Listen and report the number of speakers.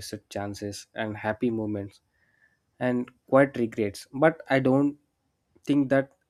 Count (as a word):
one